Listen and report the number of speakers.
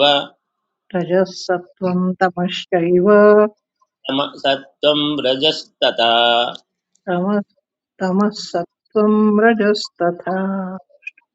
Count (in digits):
2